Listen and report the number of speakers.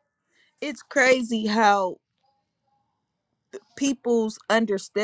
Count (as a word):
one